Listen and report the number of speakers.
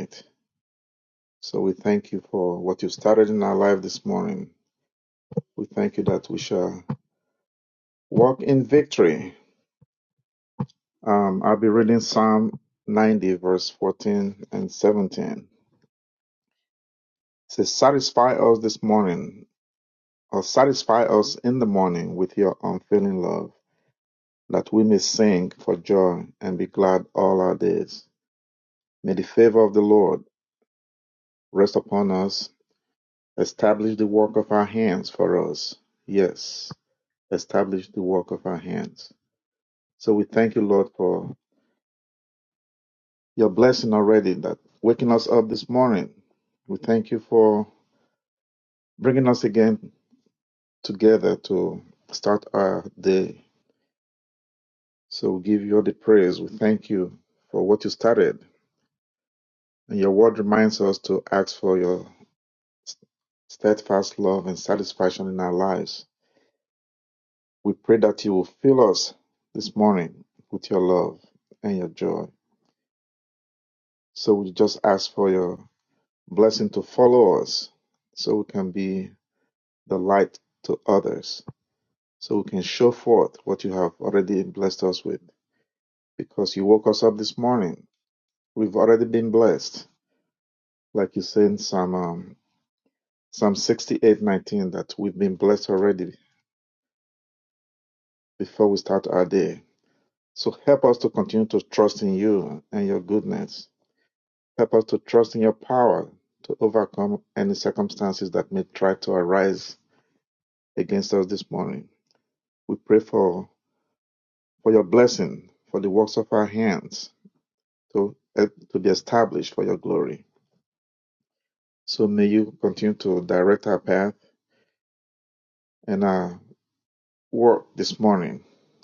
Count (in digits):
1